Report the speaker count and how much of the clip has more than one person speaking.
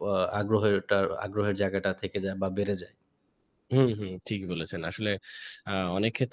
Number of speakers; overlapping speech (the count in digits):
2, no overlap